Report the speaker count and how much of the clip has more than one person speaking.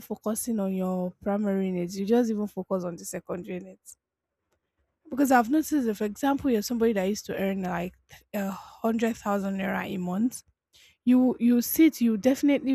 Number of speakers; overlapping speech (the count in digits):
1, no overlap